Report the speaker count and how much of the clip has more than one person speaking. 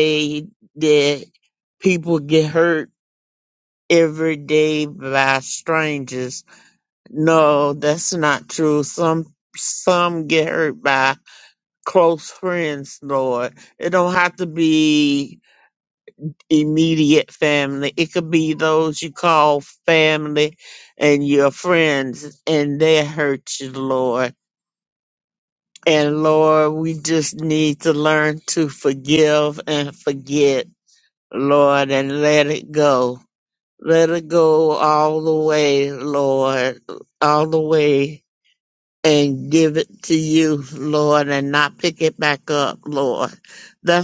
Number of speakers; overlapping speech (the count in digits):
1, no overlap